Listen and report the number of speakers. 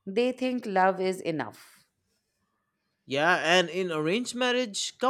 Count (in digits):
2